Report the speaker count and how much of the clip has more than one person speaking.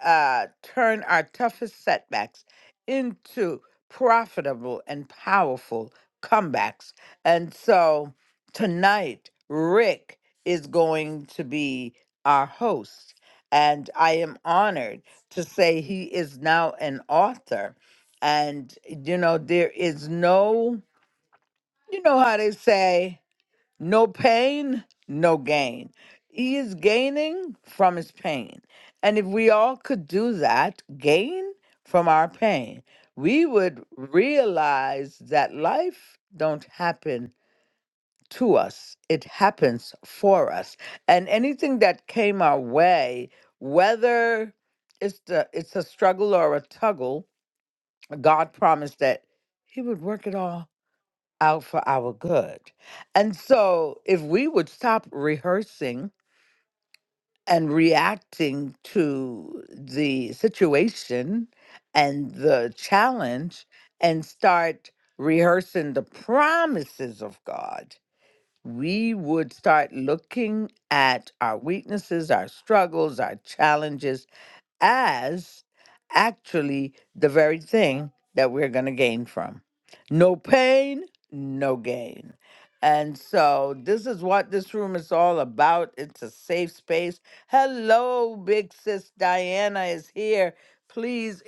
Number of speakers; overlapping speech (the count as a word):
one, no overlap